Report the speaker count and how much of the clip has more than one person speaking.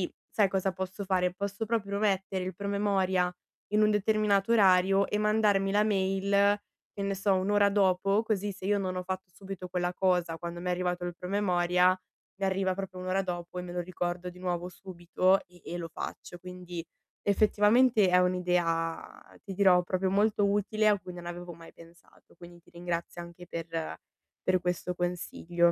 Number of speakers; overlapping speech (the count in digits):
1, no overlap